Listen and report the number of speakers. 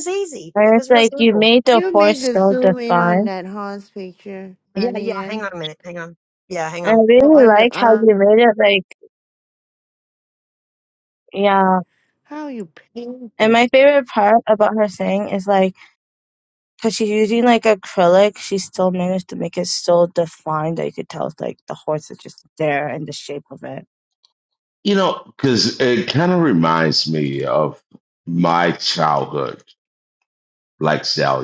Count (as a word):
four